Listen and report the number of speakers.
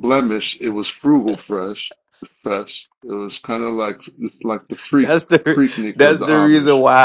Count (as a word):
two